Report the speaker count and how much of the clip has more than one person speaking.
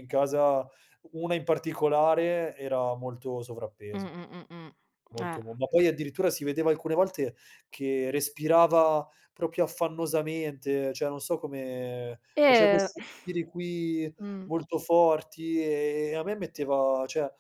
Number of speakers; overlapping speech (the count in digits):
2, about 4%